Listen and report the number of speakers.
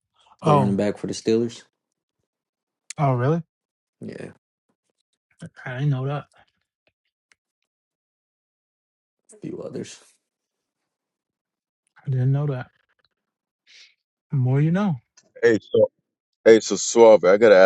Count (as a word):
three